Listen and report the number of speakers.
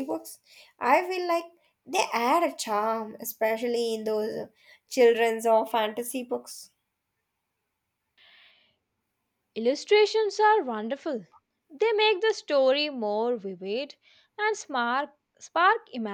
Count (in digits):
2